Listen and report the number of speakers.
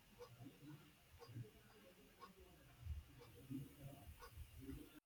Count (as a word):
zero